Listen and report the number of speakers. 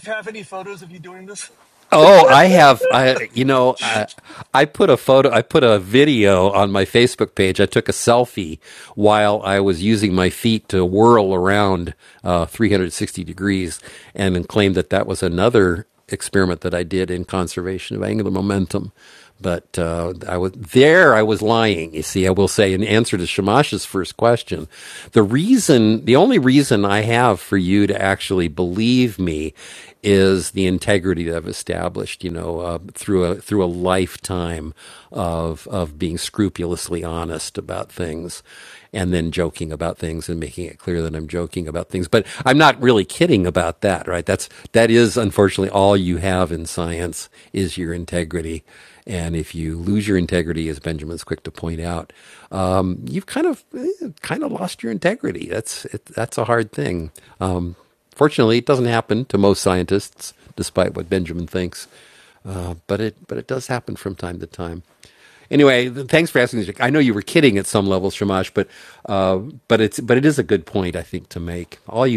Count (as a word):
two